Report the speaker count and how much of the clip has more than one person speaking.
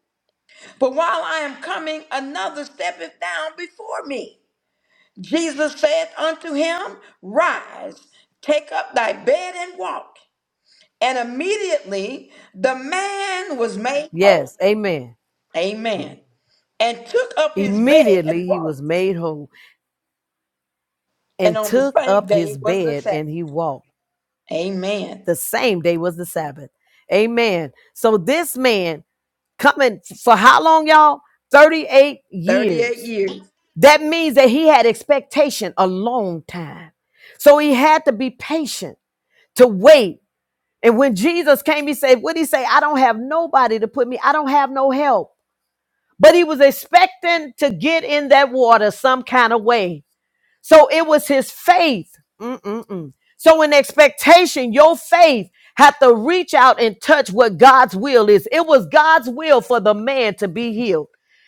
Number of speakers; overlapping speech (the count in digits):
2, about 6%